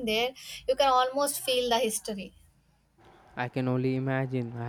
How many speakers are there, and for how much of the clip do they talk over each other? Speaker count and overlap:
2, no overlap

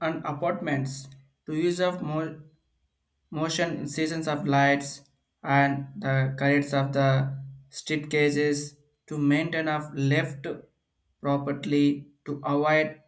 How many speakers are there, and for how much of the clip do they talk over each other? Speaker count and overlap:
1, no overlap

